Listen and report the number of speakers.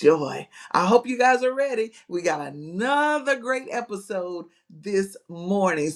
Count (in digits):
1